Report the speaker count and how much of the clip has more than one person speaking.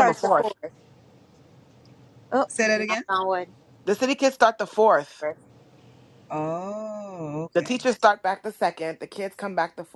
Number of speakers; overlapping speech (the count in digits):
3, about 9%